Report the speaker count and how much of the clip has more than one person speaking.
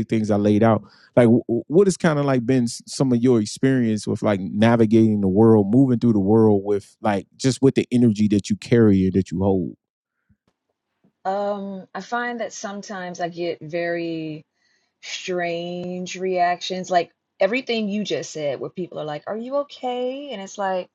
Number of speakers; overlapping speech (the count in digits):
2, no overlap